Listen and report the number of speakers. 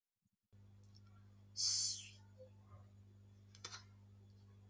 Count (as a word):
zero